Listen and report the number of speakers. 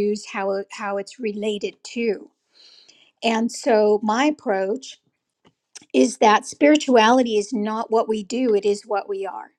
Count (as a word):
one